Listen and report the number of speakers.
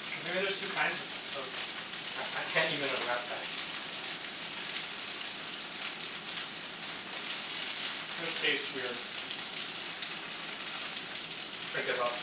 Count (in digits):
2